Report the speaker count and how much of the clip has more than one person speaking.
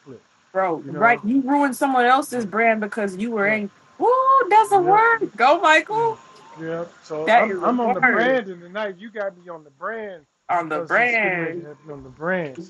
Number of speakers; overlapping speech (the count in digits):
2, about 27%